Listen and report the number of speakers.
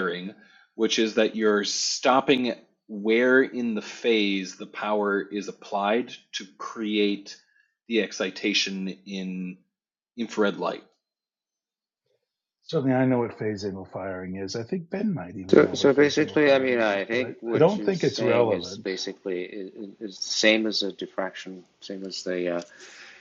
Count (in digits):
3